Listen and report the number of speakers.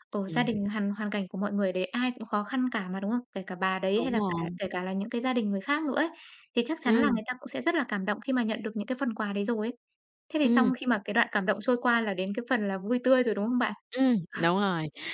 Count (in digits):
2